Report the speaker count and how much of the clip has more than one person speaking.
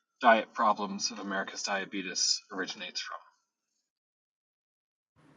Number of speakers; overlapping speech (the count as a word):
one, no overlap